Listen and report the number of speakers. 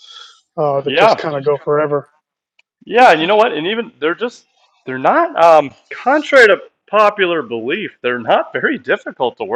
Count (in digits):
2